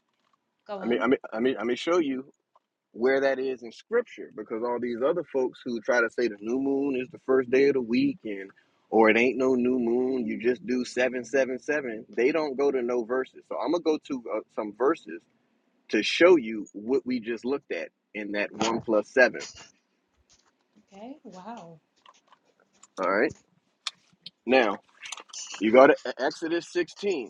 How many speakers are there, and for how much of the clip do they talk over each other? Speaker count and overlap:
two, about 3%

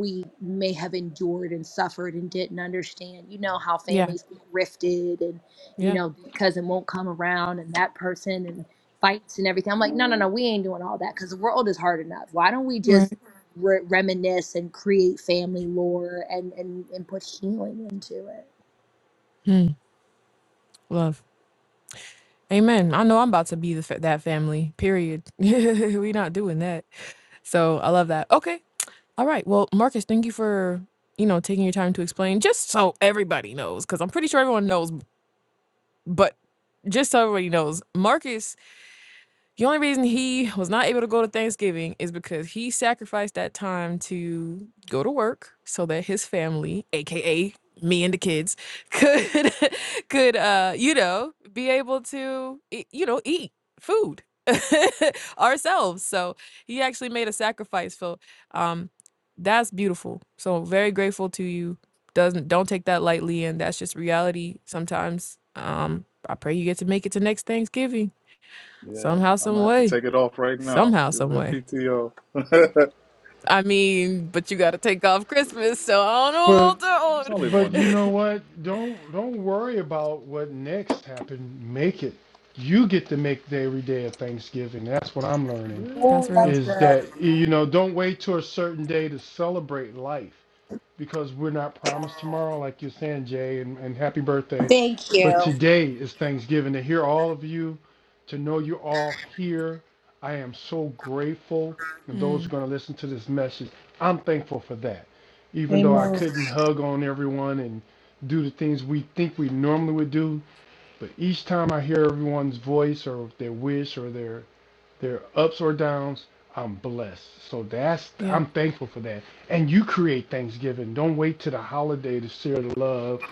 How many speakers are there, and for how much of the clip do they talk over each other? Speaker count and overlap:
four, about 5%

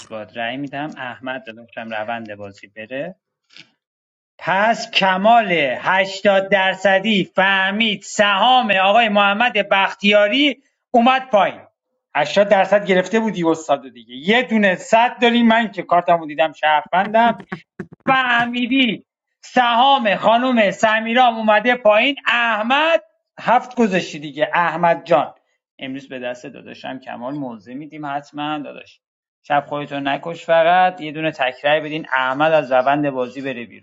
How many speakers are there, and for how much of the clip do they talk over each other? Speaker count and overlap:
one, no overlap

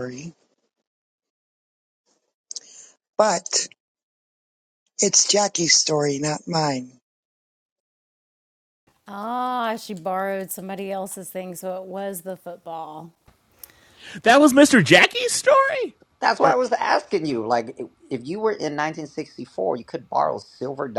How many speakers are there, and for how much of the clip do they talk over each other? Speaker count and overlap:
four, about 1%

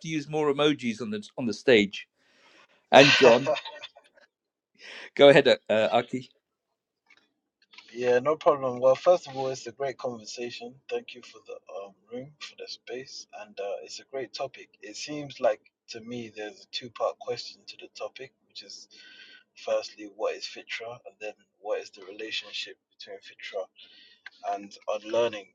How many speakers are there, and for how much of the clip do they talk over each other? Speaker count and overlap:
two, about 2%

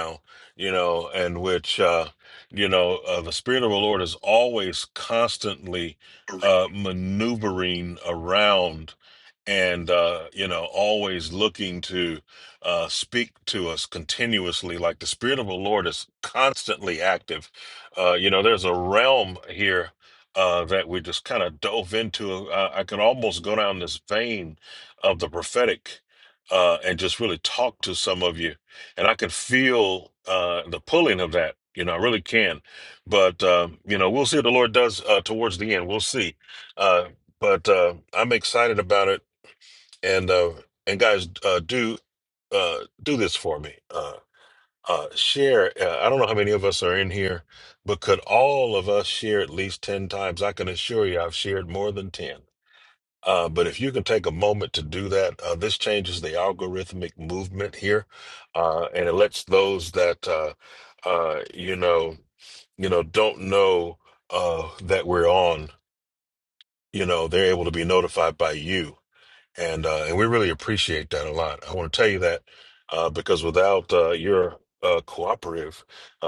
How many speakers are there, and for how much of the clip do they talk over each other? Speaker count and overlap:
one, no overlap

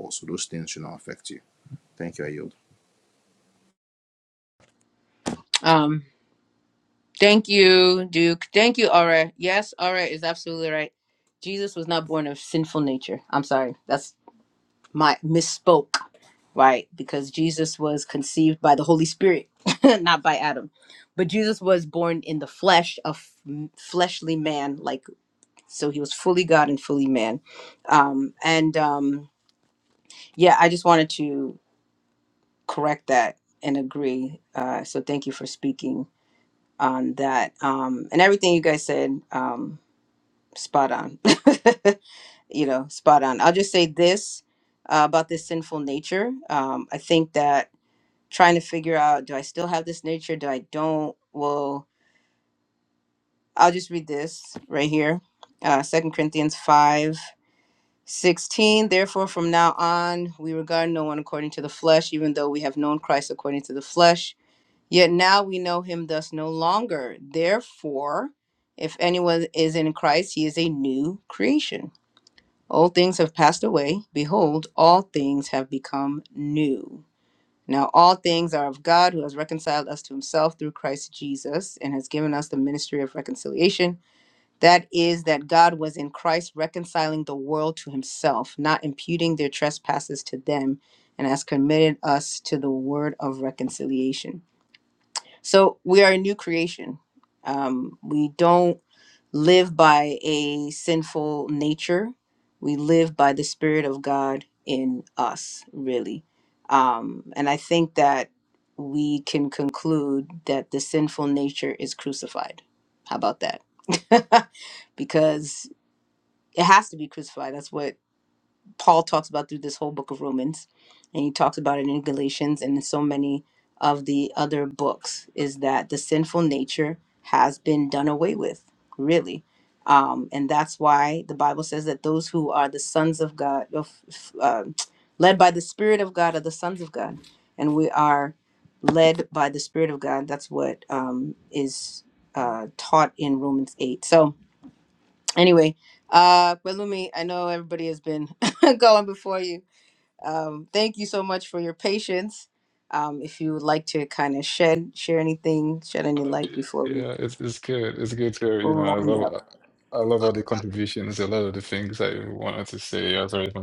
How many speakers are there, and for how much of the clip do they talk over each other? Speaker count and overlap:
three, about 1%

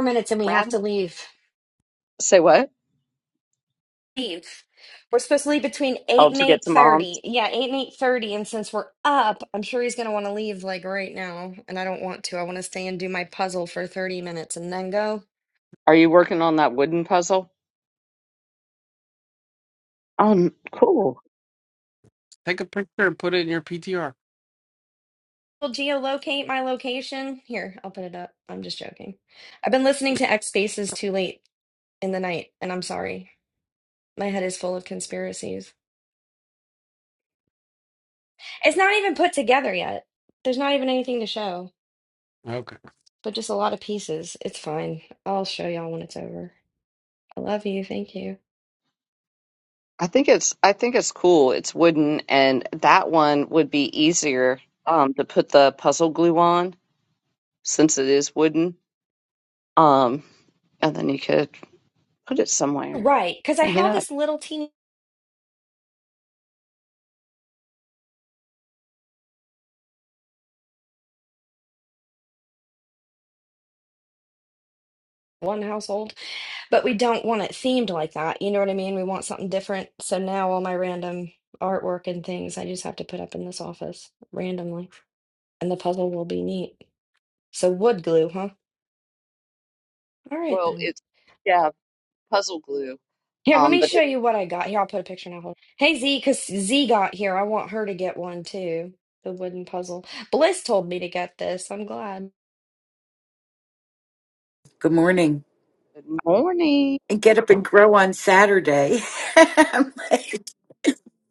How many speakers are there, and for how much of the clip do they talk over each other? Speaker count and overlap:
four, about 2%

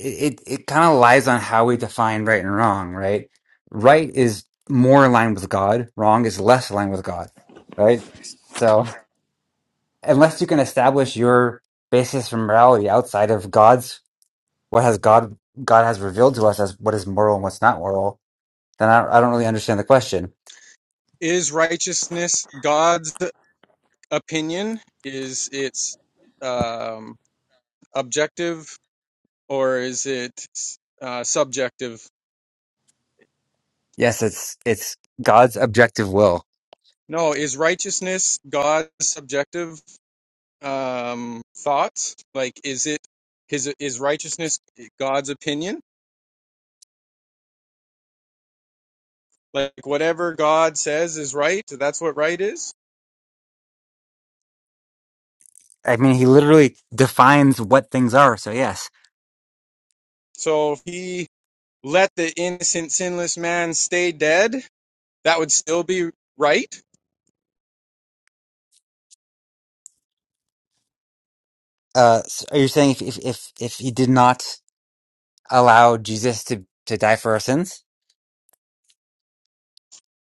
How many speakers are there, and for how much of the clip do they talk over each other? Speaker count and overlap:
two, no overlap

